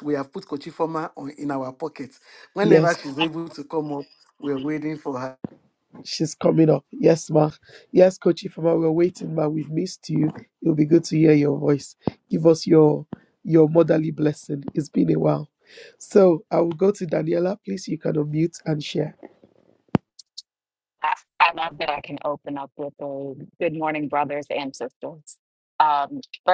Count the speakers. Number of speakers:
3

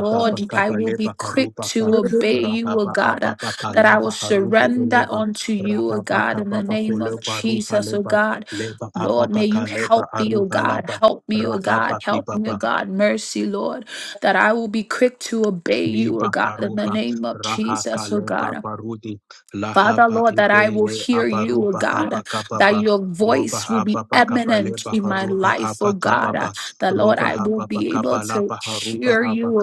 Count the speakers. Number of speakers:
2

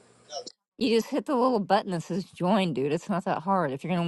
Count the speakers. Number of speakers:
1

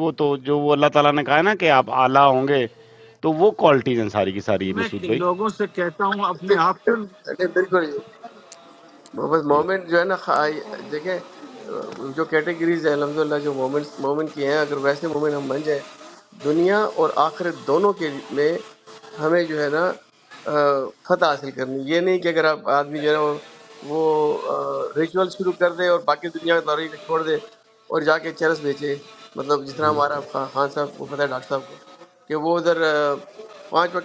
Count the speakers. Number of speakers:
3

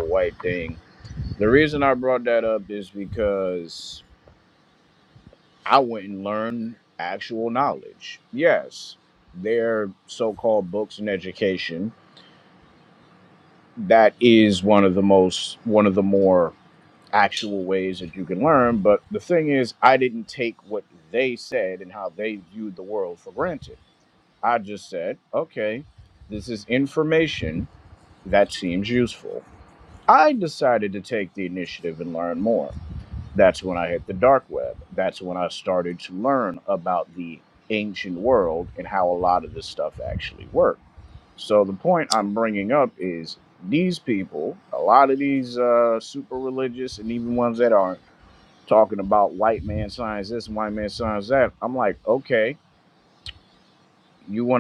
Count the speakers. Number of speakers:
1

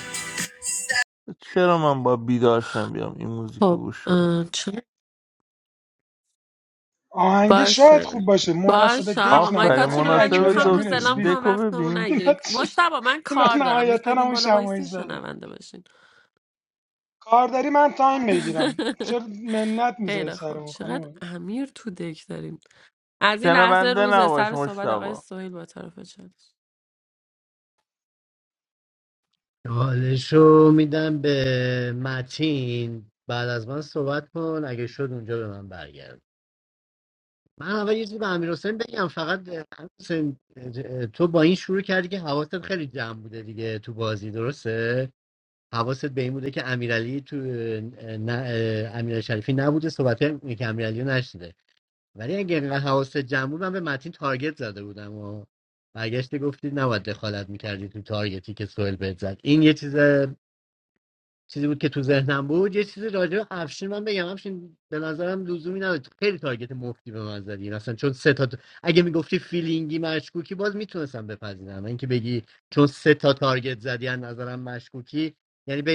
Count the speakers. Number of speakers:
4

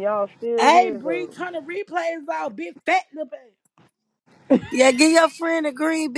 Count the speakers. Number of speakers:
3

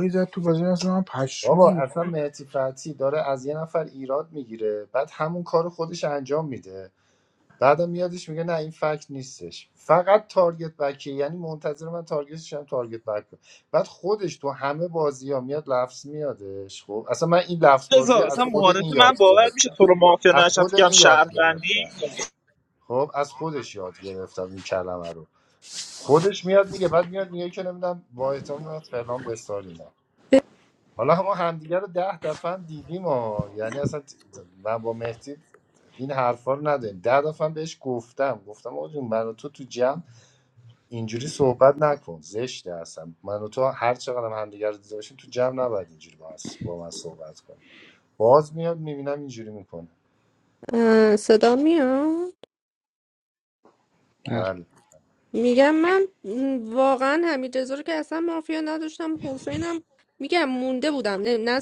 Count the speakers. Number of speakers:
4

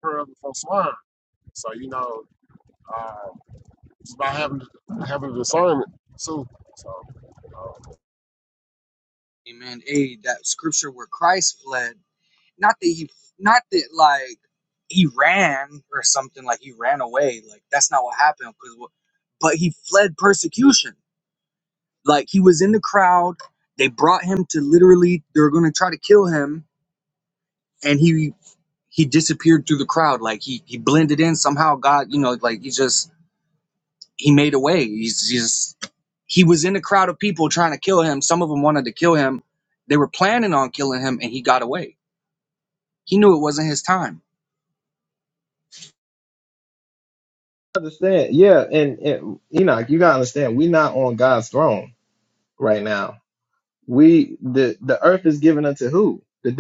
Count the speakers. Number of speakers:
3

